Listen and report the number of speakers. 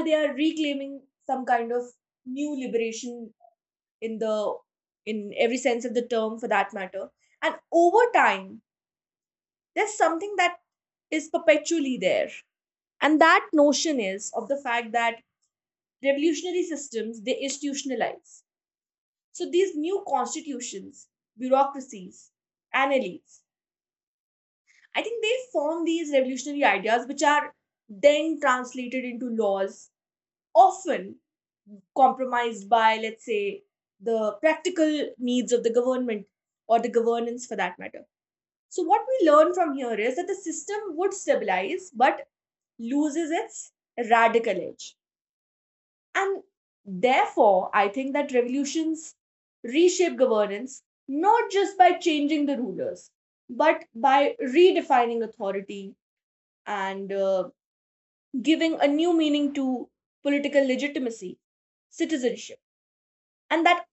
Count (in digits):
1